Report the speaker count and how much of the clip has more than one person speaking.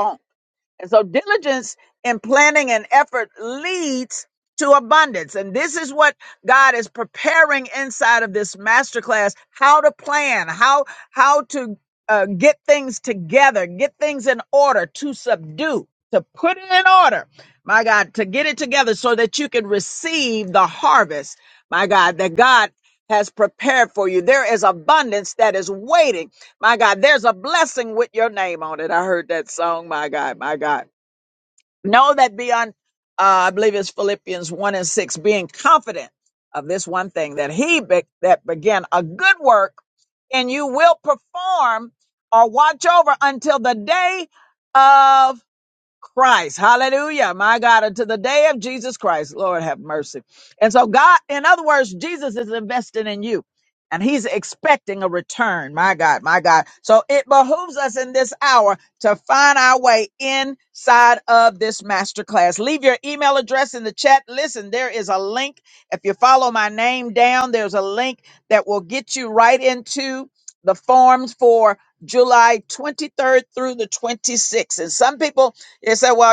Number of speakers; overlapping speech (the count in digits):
1, no overlap